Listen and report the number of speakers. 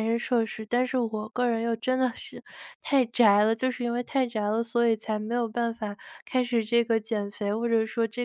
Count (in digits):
1